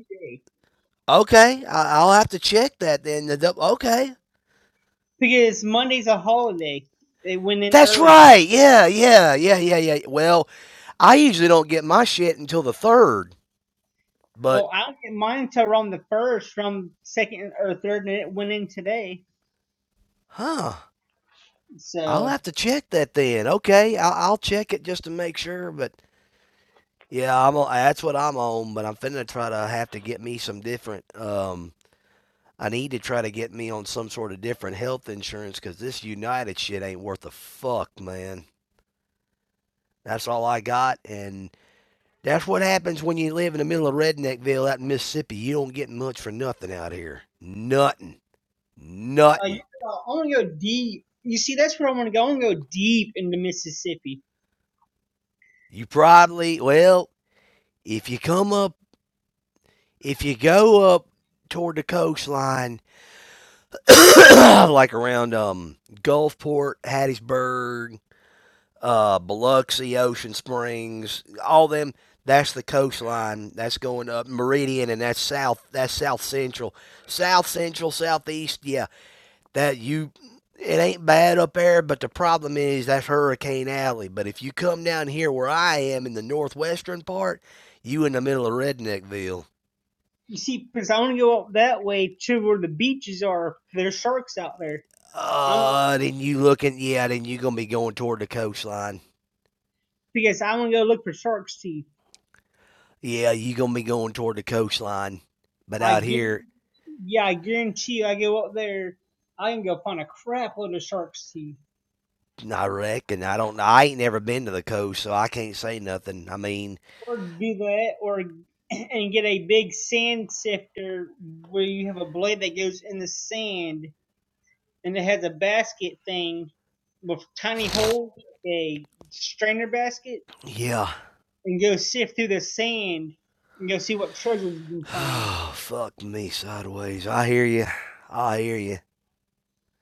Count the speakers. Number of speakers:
2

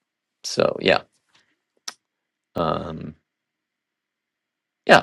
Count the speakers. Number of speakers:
1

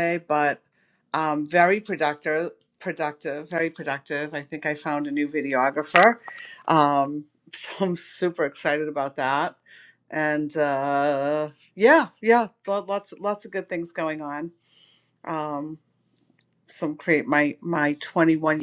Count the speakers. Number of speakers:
1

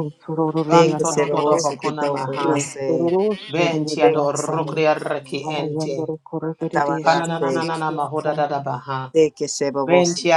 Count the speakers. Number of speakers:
3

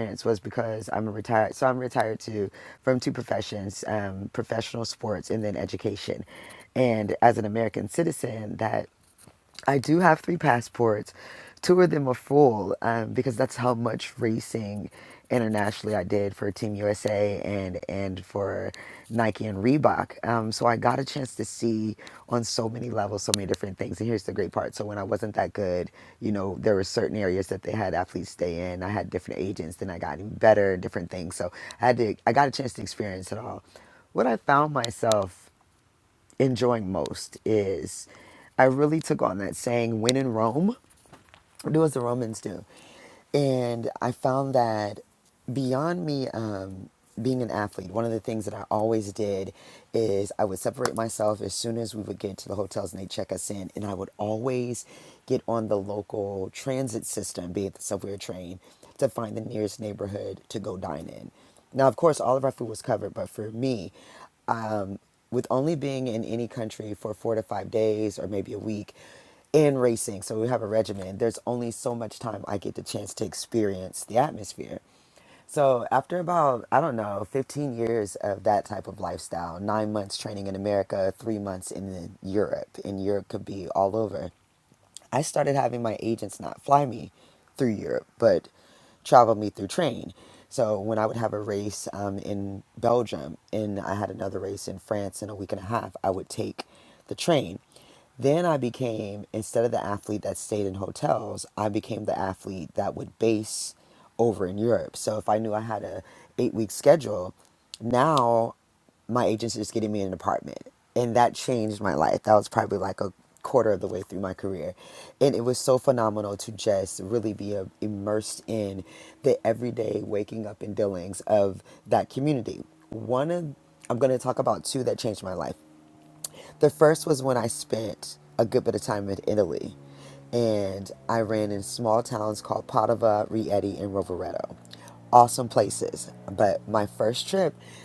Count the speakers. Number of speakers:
1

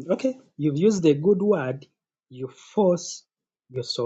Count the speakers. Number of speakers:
1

